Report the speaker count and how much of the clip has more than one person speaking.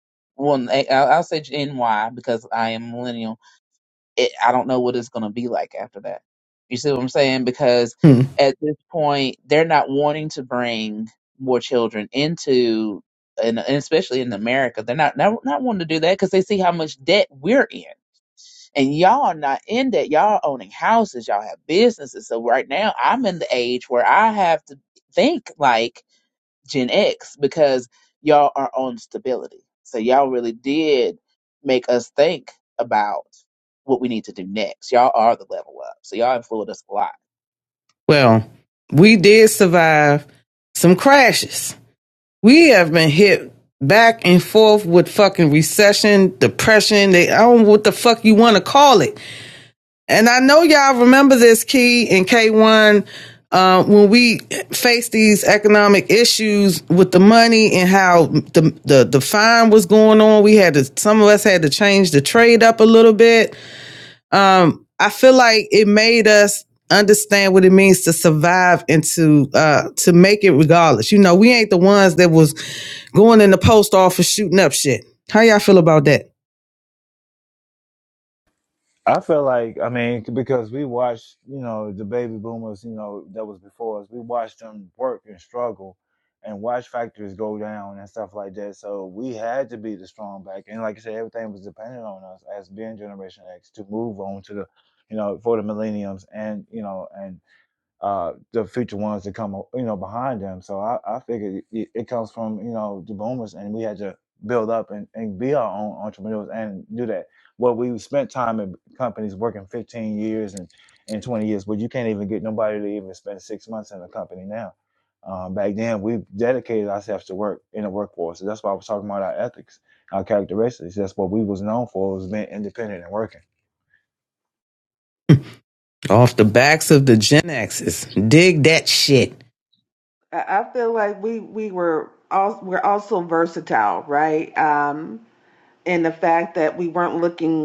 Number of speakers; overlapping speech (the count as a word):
four, no overlap